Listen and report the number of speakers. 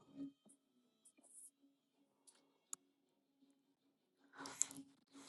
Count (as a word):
zero